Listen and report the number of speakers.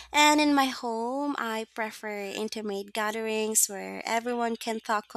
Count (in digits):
1